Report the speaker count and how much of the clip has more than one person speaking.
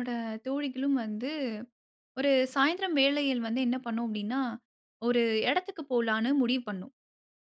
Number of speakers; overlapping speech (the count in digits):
1, no overlap